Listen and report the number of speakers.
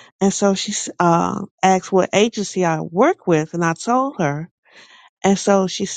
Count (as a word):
one